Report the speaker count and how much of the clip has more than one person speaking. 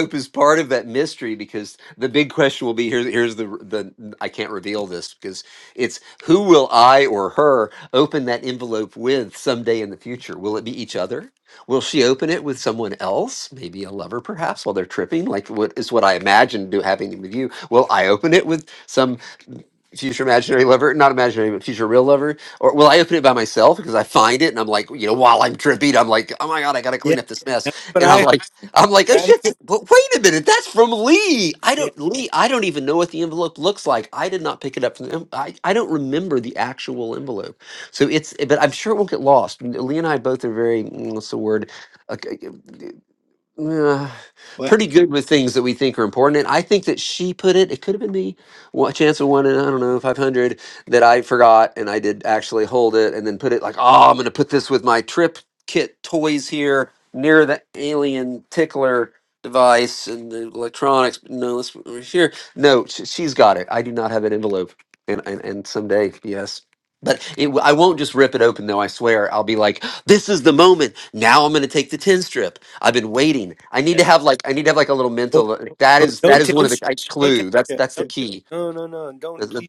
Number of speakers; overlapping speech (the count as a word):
two, about 4%